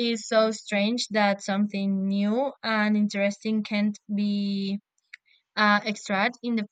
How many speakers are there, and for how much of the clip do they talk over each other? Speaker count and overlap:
one, no overlap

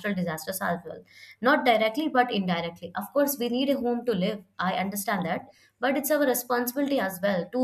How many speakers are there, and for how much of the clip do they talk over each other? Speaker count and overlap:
one, no overlap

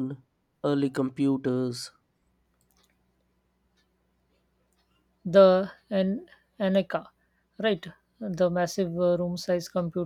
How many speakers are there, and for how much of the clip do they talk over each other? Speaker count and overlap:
two, no overlap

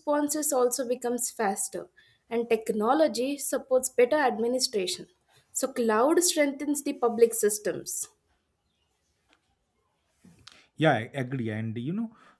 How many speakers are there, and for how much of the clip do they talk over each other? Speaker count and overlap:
two, no overlap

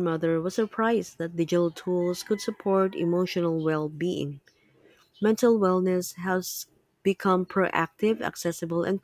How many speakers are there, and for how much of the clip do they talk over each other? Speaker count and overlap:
one, no overlap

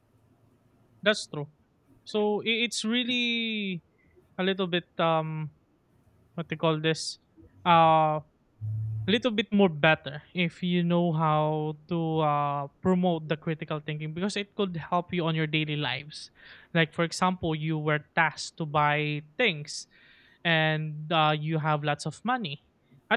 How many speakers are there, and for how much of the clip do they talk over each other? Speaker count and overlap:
one, no overlap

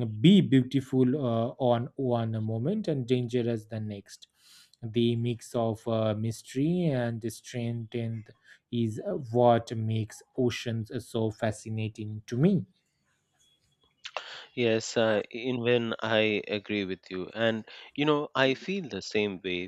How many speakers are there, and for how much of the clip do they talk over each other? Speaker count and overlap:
two, no overlap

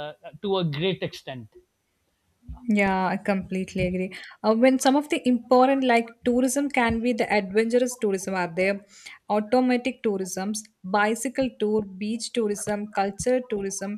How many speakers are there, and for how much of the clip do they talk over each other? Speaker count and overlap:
two, no overlap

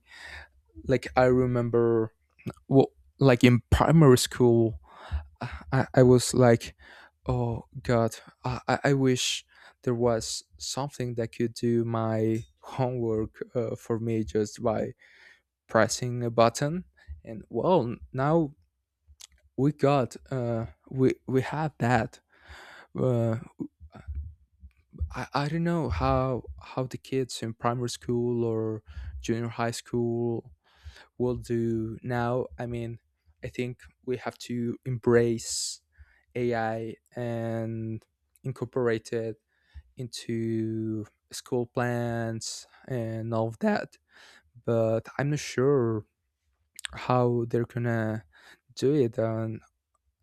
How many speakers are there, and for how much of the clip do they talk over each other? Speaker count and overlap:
one, no overlap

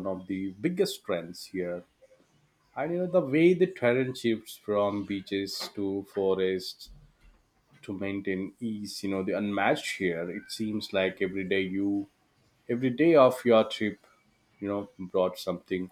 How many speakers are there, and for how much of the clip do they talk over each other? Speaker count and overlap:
one, no overlap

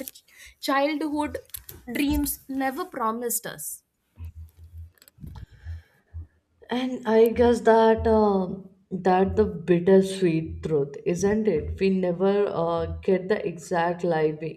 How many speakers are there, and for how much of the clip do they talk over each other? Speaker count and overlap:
two, no overlap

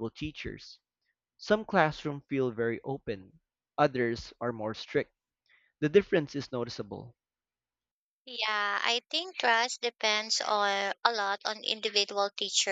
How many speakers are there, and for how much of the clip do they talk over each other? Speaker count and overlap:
two, no overlap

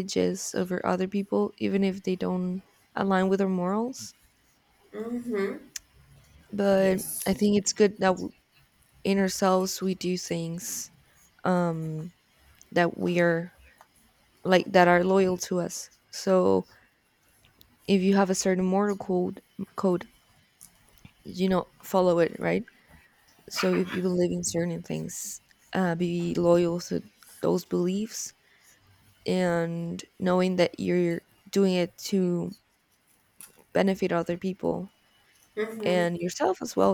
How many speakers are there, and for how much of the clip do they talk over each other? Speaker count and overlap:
two, about 1%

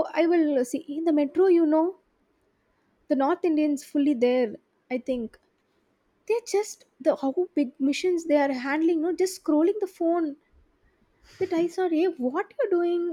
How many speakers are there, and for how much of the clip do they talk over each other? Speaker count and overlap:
one, no overlap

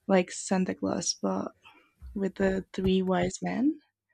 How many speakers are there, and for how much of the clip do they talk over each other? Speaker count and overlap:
one, no overlap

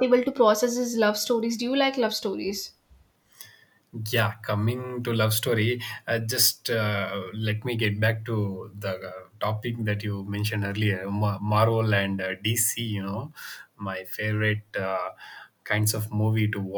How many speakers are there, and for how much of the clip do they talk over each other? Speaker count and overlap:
two, no overlap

